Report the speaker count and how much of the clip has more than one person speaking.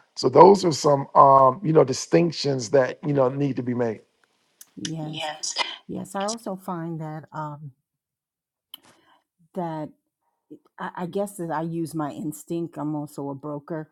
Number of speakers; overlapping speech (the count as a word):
two, no overlap